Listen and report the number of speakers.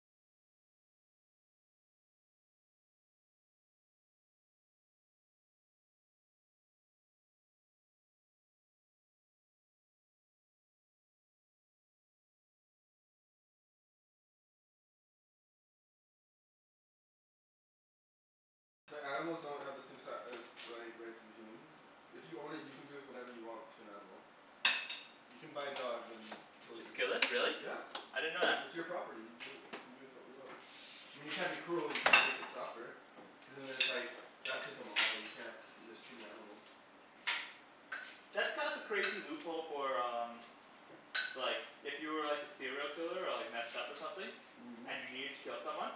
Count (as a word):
two